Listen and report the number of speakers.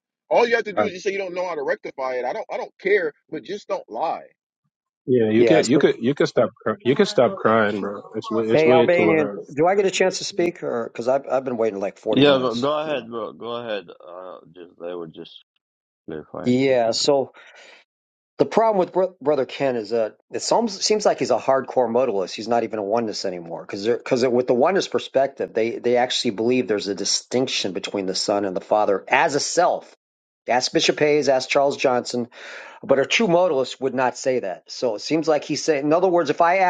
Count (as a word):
four